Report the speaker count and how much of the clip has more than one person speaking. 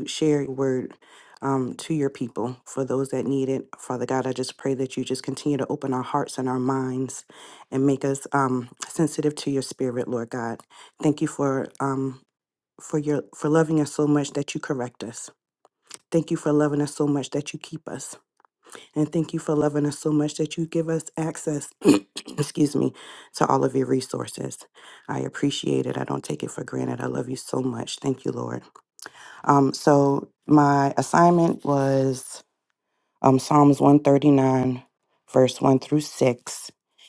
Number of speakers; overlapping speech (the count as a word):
one, no overlap